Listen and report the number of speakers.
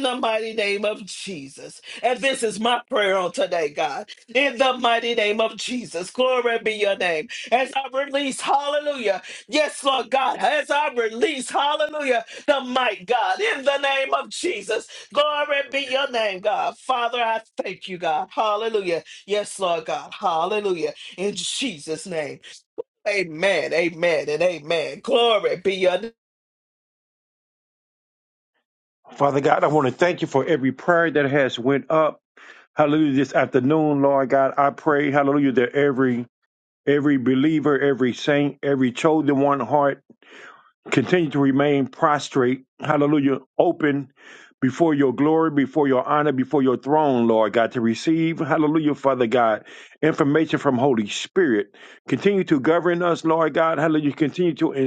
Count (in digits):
2